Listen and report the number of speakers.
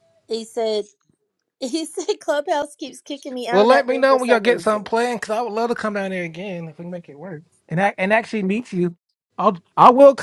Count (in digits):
2